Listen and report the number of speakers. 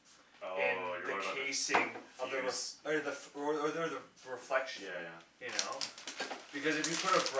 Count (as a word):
two